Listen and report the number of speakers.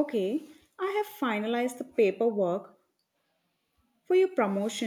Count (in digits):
1